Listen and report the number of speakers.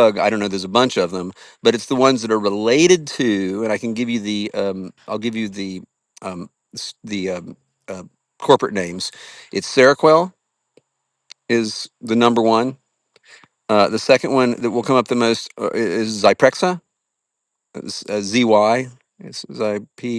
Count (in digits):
1